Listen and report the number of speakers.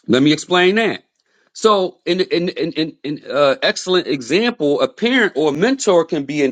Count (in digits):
1